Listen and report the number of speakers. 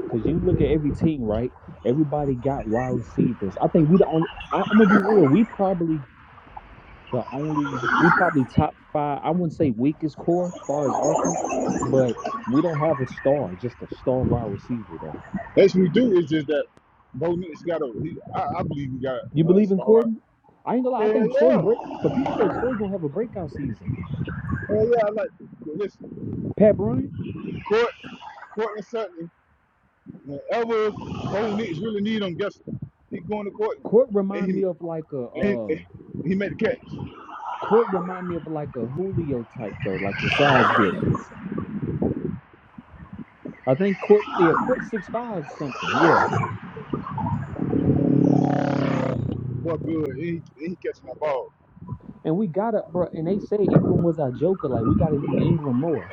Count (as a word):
two